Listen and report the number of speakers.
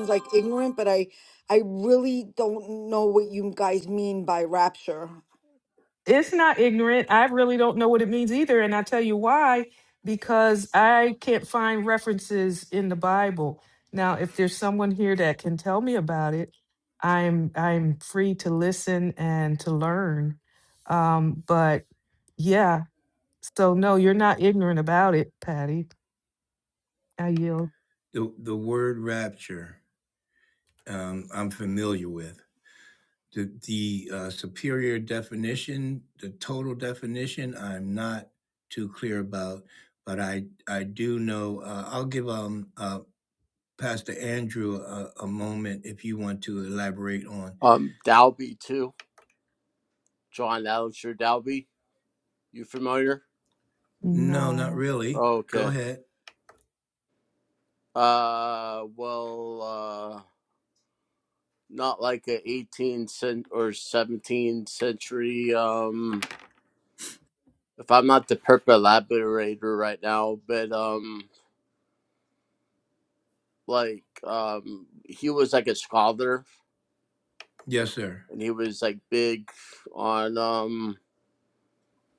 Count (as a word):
four